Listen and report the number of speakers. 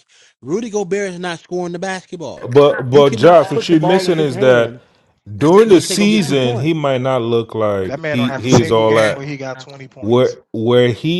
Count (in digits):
3